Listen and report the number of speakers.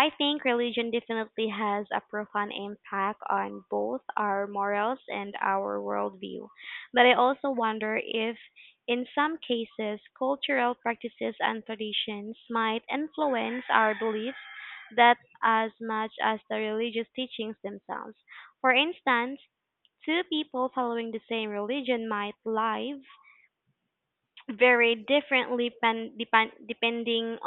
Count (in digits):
1